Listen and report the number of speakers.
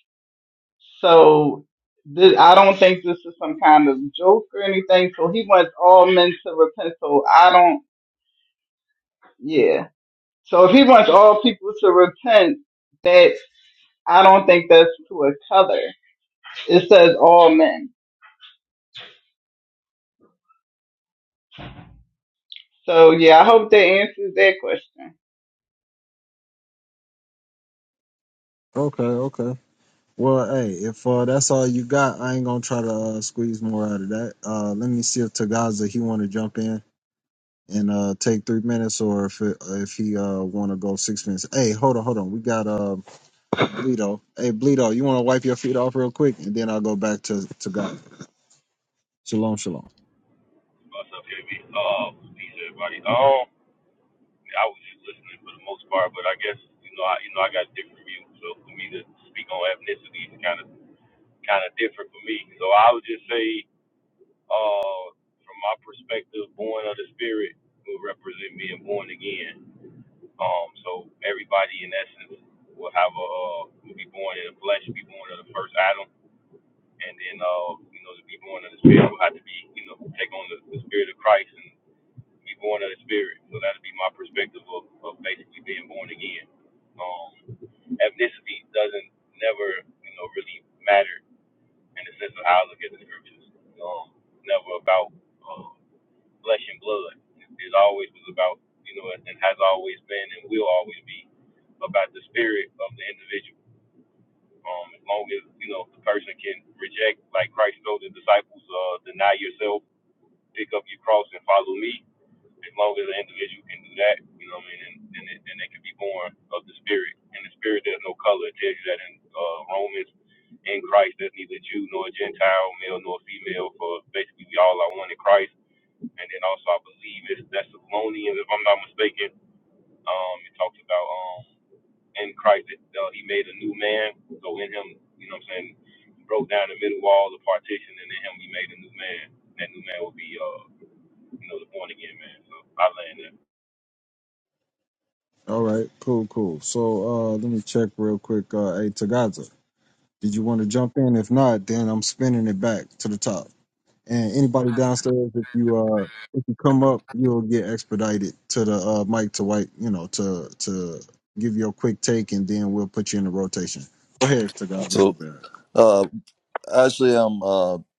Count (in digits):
4